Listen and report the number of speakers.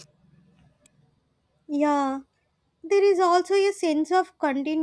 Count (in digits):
1